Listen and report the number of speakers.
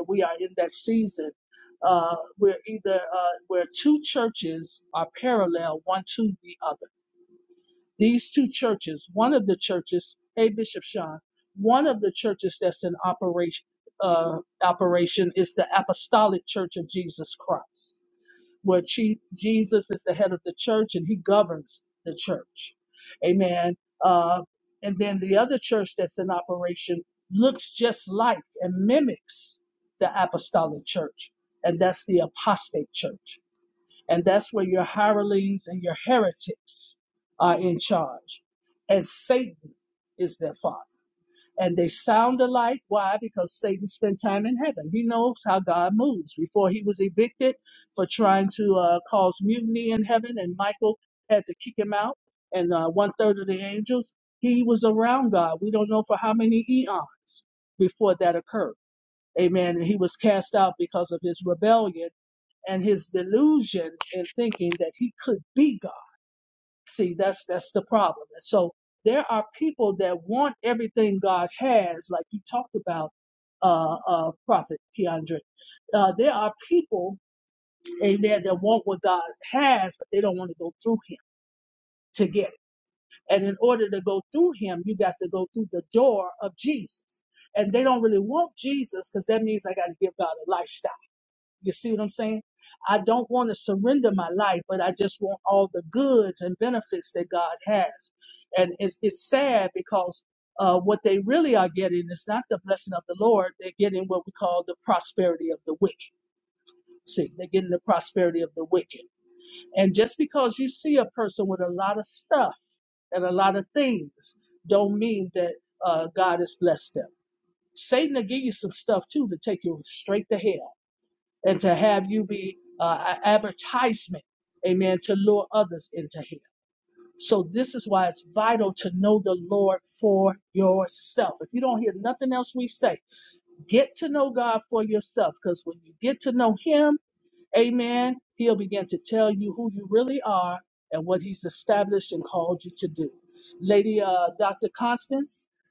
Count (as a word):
one